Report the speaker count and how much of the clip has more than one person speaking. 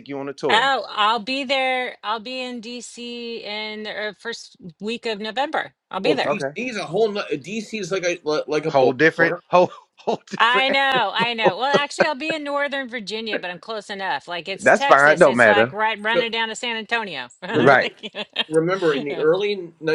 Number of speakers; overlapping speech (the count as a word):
three, about 18%